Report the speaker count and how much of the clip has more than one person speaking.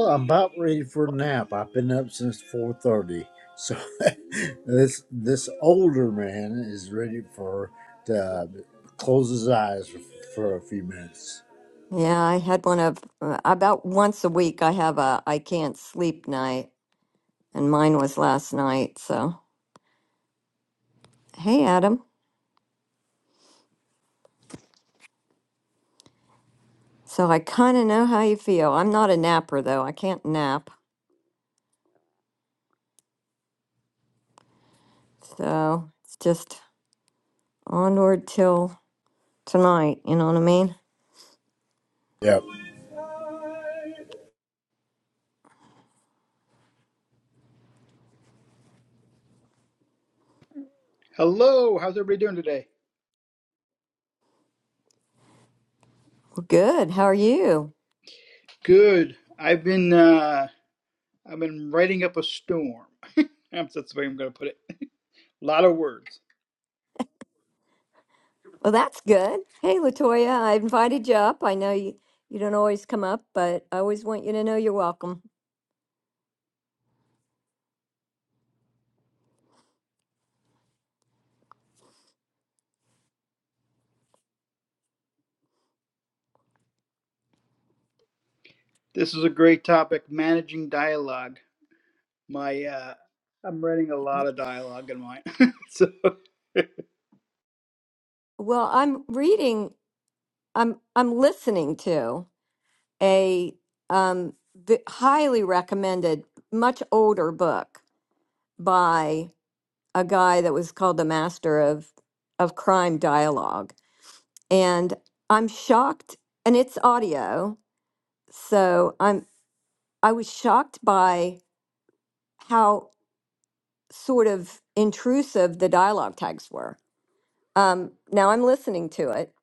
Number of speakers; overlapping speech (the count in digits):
3, no overlap